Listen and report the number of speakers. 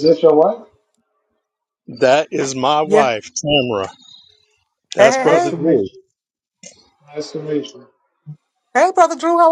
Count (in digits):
3